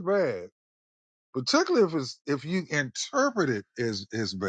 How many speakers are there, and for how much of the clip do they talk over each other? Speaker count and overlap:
1, no overlap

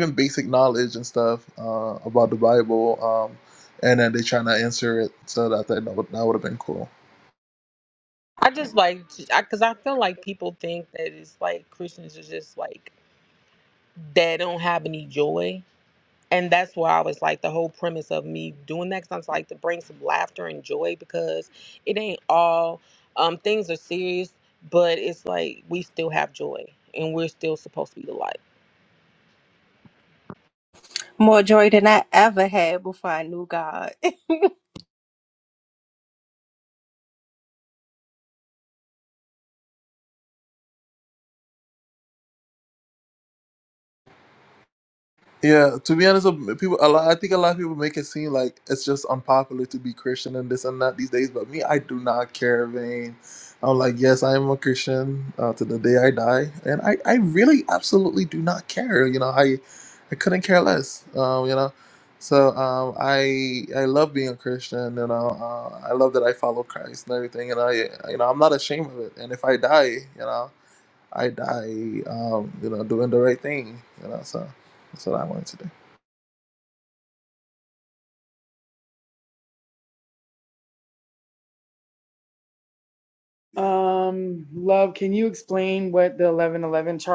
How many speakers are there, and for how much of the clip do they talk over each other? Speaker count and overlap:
4, no overlap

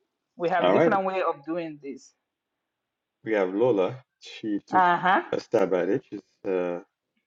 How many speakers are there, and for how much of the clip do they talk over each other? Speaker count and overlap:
2, about 7%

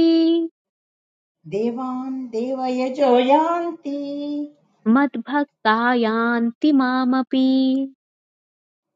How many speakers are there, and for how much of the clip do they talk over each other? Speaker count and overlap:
2, no overlap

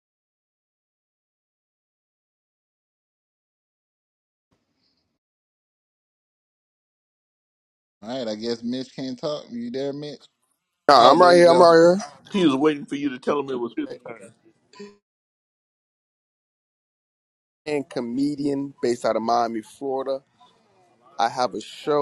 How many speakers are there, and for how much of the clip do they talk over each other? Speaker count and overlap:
3, about 3%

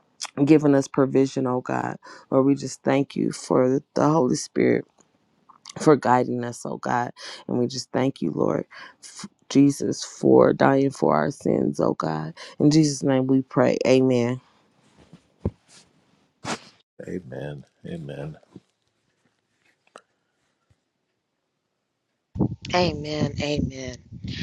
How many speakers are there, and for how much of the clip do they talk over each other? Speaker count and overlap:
3, no overlap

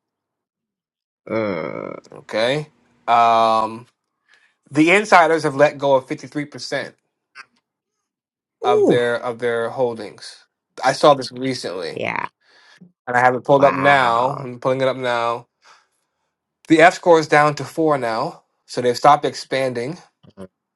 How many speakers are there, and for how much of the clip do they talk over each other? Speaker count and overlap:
2, about 6%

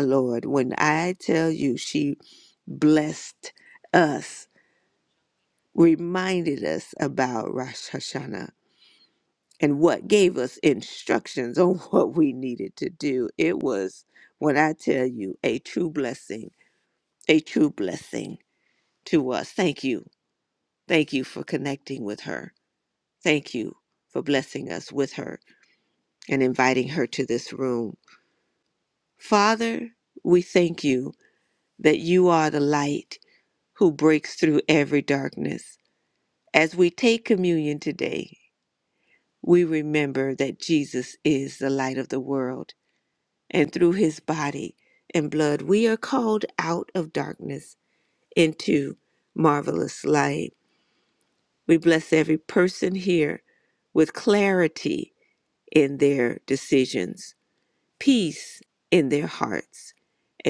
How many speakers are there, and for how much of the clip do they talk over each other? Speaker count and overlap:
1, no overlap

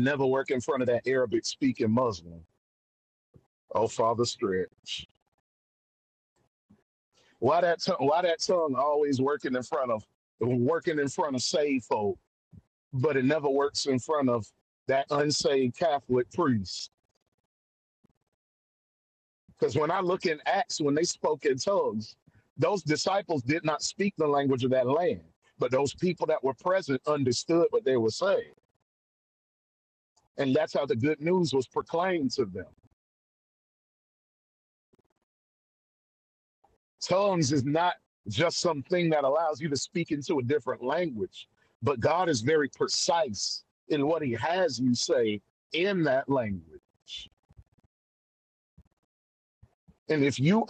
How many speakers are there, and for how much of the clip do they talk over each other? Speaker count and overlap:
1, no overlap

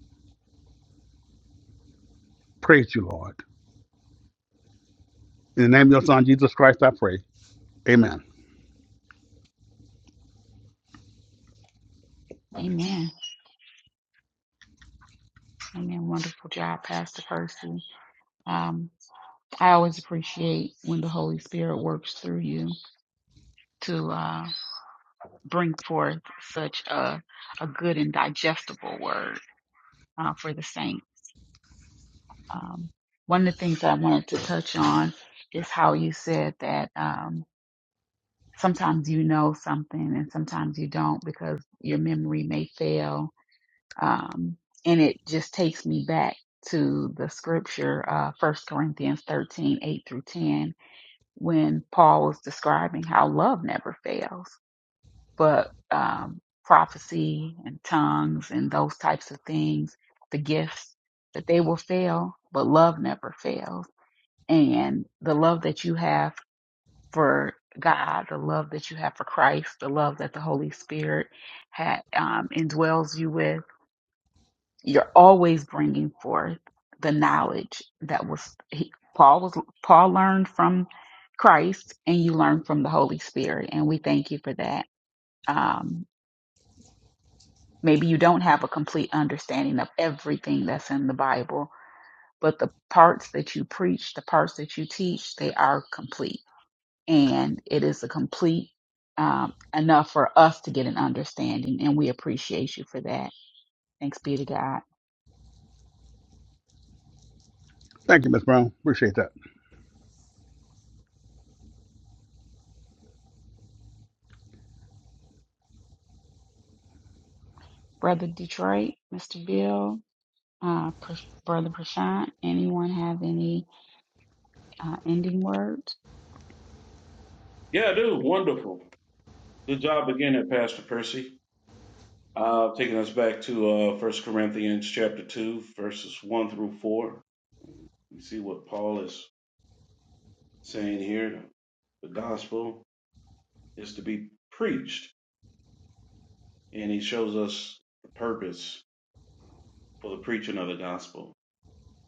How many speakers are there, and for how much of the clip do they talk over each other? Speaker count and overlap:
3, no overlap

